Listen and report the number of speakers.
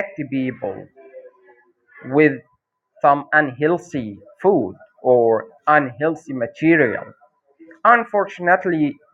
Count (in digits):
1